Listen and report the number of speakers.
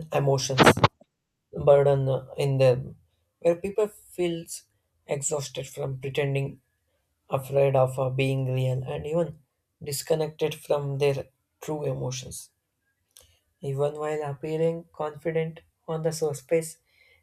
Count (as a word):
one